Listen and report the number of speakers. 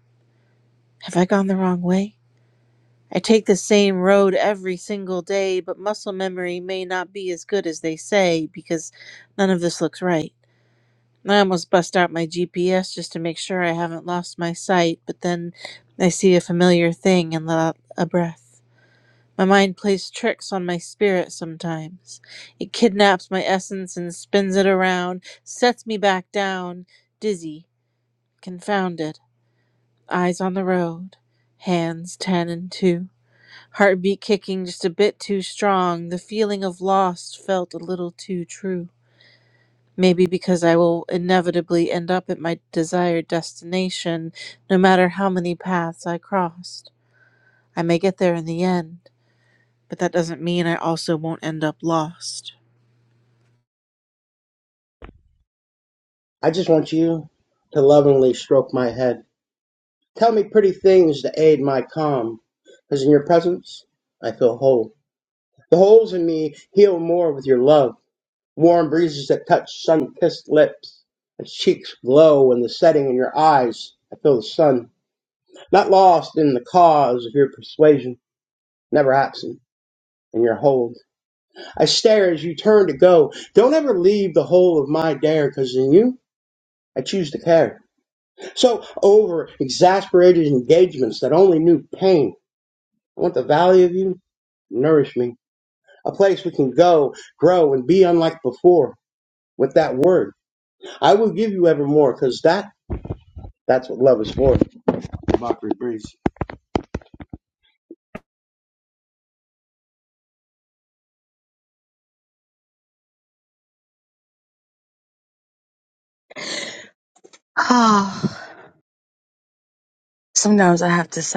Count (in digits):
3